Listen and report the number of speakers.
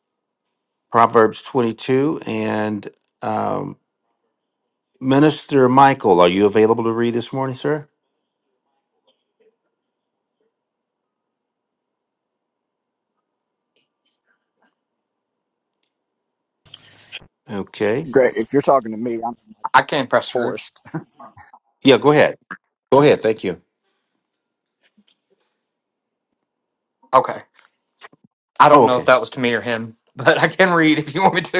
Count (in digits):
3